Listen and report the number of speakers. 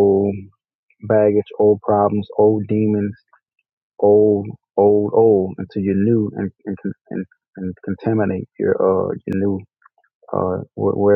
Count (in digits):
1